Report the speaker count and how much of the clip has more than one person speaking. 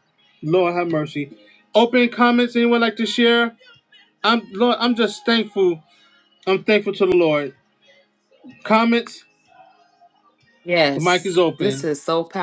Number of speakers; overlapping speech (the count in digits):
2, about 3%